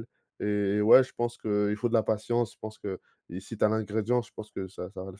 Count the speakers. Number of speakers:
1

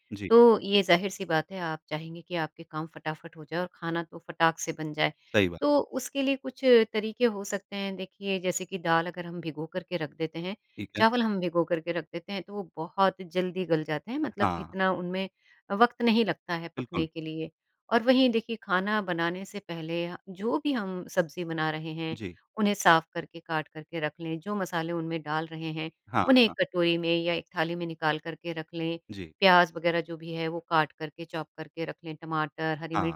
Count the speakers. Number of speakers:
2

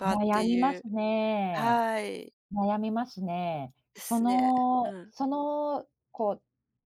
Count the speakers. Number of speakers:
2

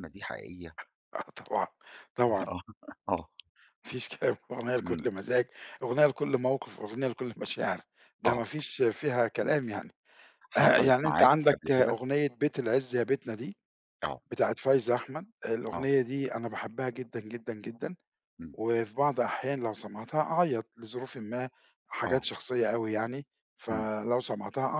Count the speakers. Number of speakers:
2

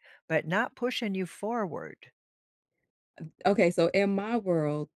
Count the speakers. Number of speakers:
2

